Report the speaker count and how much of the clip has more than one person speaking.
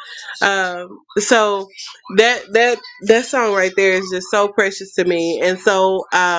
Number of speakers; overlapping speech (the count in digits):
1, no overlap